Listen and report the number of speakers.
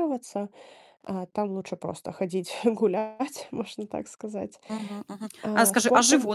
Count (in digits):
2